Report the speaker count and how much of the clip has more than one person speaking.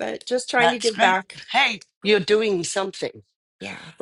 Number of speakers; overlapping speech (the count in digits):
2, about 13%